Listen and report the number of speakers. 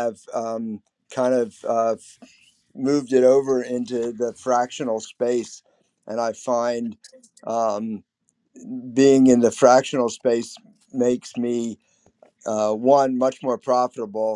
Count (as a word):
one